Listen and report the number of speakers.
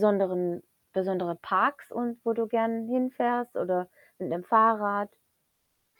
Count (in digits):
1